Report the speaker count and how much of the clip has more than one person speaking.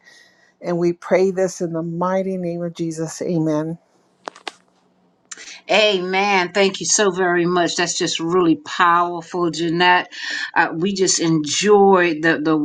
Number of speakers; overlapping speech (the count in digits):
2, no overlap